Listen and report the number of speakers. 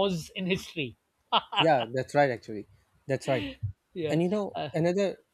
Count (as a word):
two